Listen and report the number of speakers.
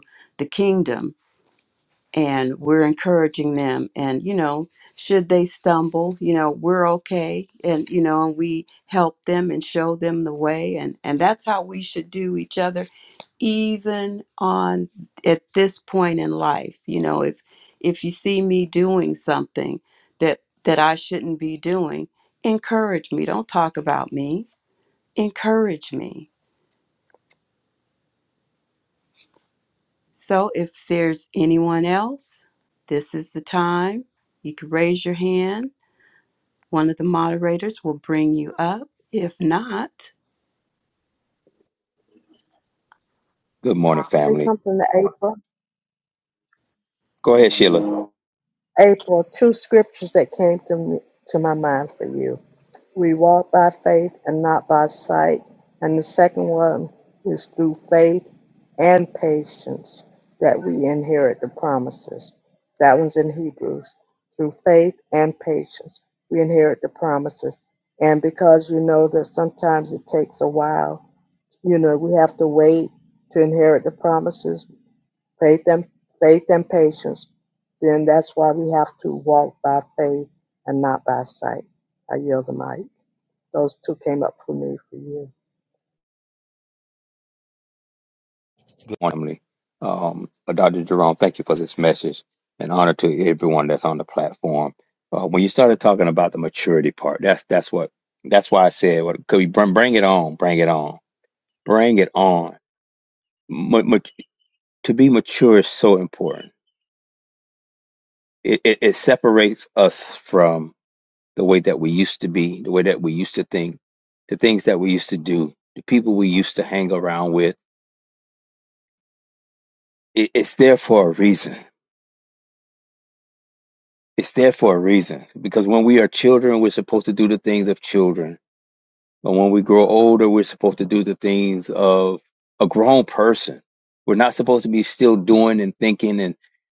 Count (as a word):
three